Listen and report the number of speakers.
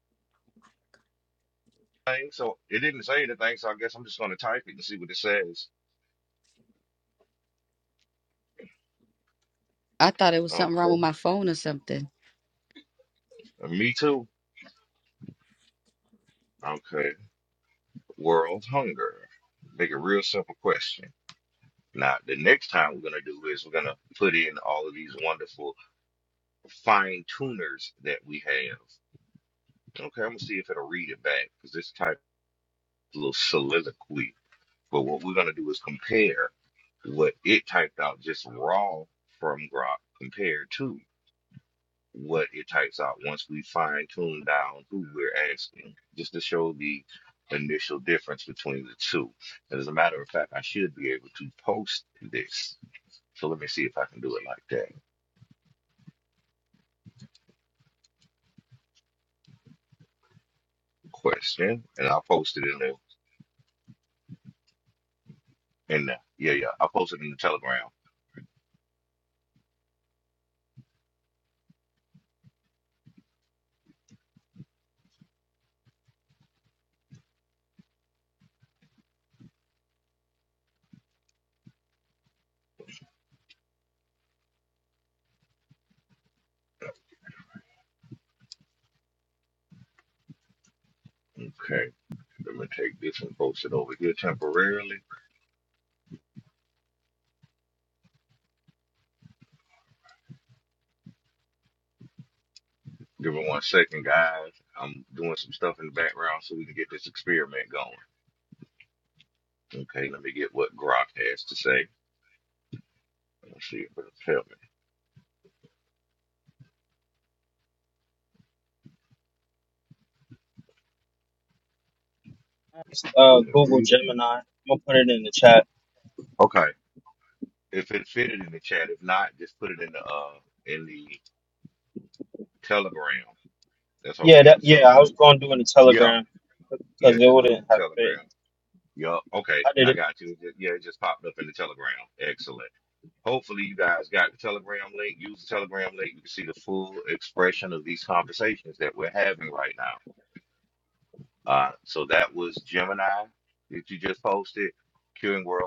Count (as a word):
three